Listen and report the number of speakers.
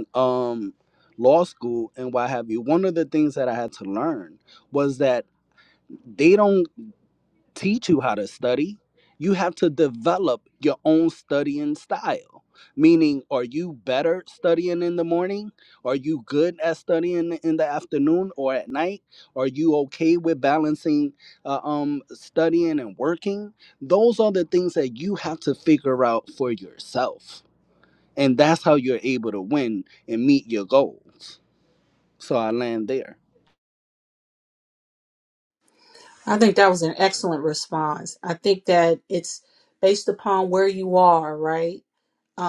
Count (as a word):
two